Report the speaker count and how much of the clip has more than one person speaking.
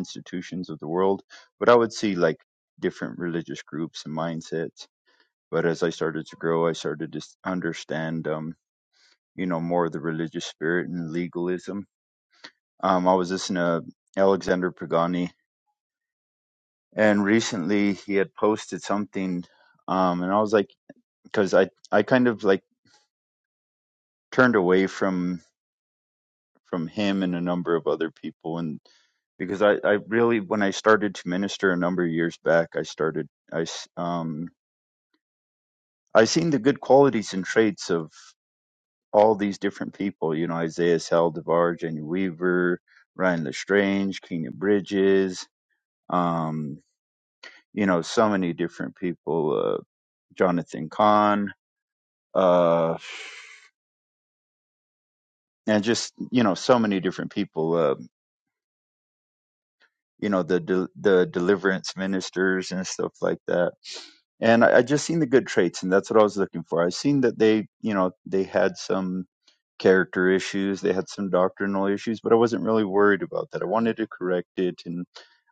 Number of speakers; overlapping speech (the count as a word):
one, no overlap